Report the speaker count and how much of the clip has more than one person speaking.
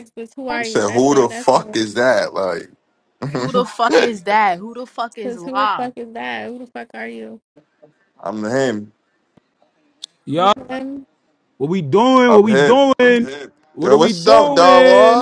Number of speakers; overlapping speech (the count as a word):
four, about 24%